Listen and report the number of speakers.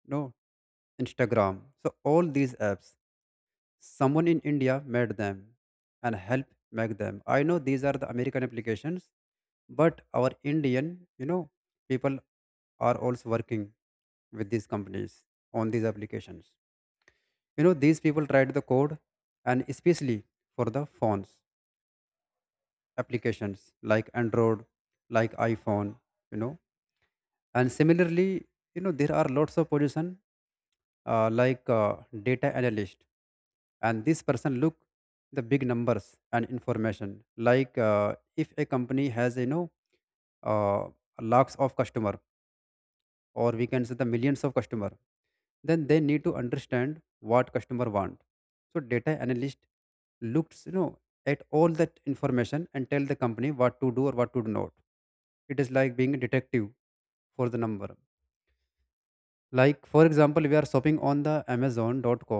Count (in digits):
1